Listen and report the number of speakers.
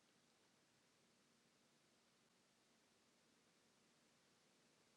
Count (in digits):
0